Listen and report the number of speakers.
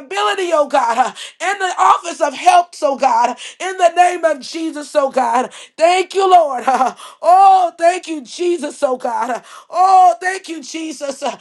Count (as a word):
one